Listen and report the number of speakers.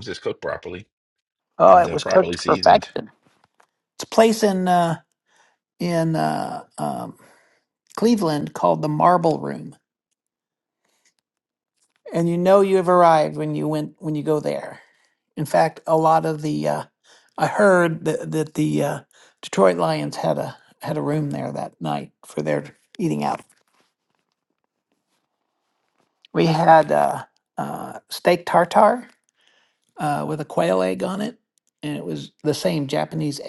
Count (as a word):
two